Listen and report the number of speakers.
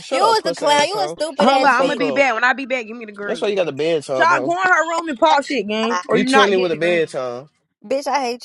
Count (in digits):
4